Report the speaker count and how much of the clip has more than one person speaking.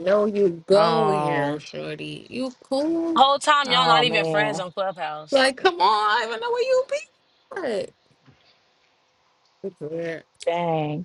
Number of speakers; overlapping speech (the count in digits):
3, about 17%